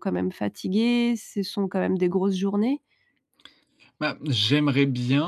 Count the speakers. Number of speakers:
2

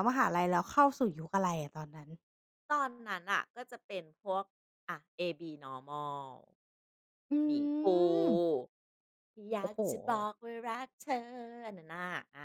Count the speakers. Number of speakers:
2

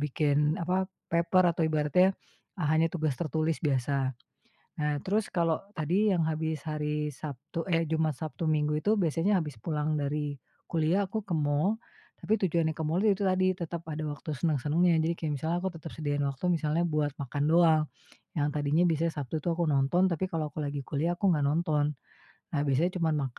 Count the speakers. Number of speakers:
1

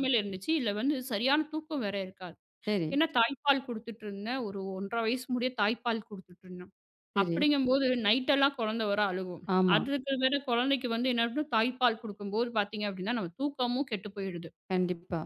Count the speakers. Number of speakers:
2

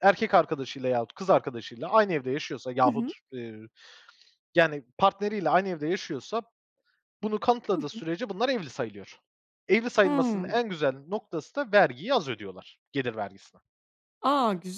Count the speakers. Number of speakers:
2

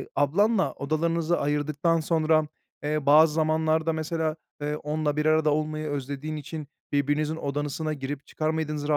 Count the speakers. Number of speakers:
1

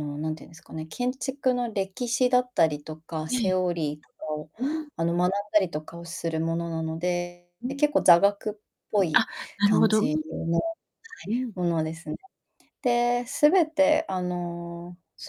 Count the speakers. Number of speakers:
2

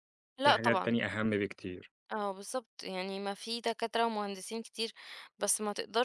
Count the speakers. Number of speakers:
2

